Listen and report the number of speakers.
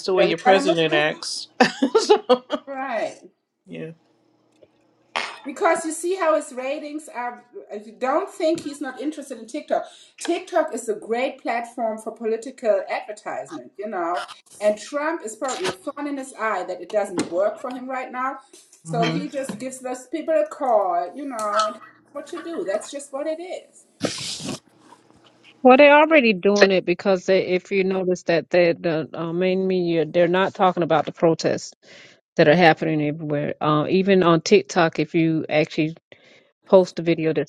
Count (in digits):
3